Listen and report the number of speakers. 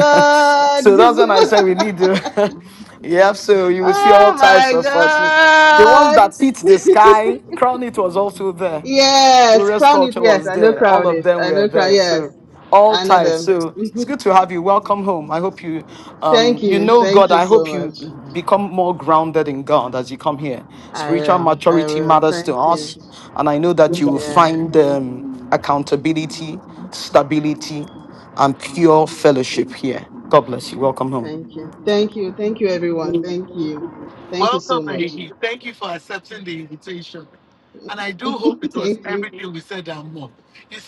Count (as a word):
three